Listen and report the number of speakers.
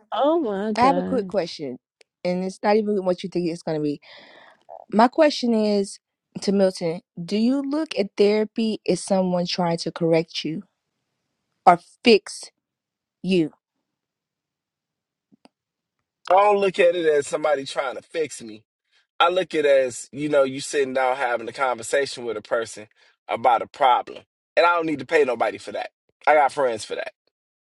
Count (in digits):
3